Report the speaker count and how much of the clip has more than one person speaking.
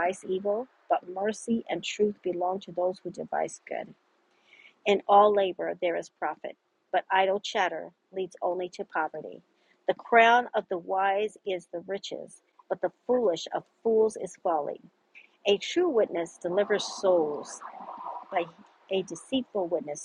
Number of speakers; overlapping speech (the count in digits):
1, no overlap